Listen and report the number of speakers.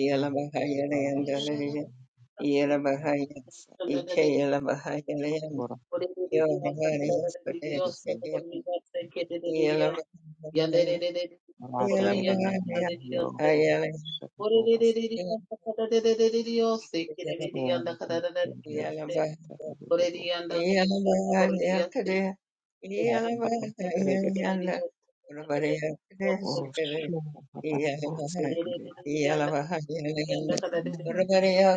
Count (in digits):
3